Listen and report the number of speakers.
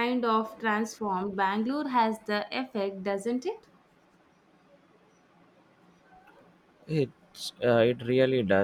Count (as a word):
two